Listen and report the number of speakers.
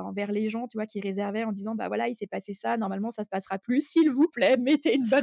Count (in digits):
1